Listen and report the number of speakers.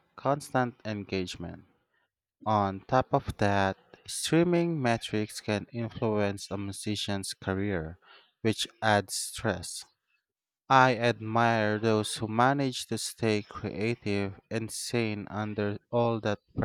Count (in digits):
1